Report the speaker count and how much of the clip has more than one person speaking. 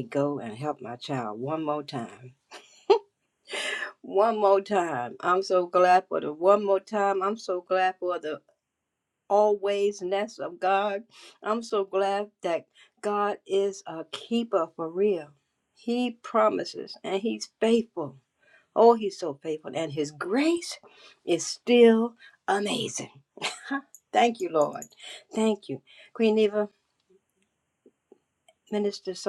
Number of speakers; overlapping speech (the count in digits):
1, no overlap